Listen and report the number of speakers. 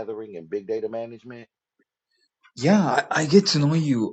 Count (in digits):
2